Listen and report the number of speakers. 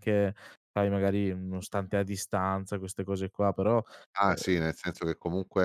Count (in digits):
2